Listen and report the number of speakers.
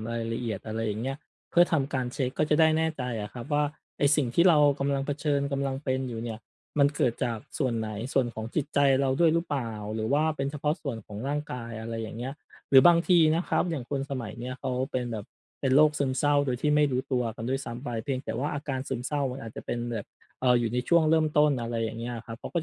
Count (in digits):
1